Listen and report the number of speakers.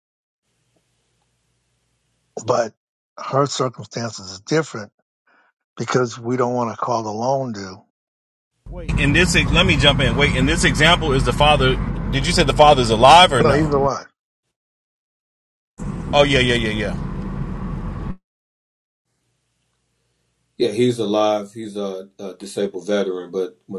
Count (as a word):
three